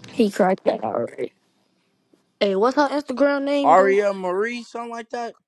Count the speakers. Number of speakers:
3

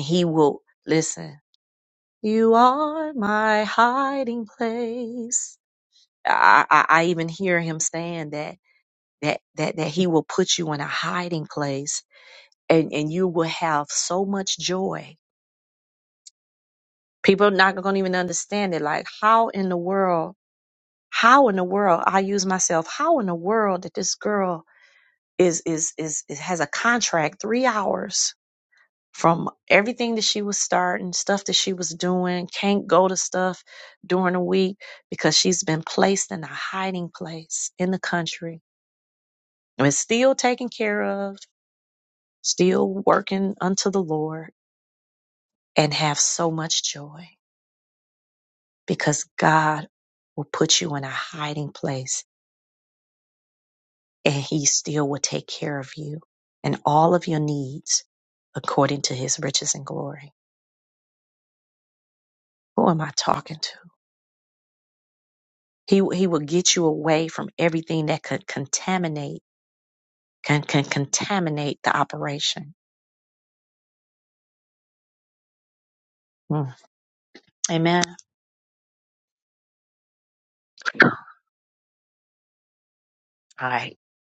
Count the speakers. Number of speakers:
1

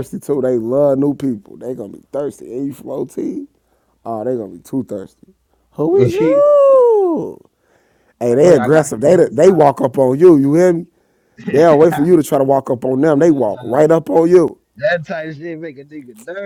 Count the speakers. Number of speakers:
2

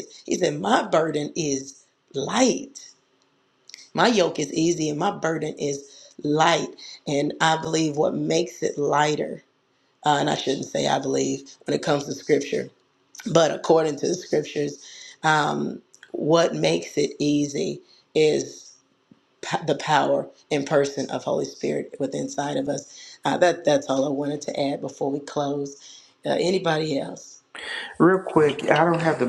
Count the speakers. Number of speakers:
2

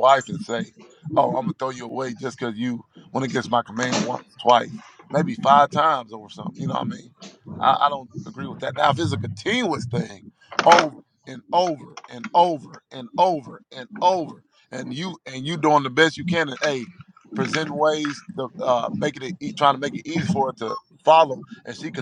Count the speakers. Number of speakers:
1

